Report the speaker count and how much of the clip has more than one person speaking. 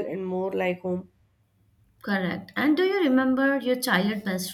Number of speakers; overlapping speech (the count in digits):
2, no overlap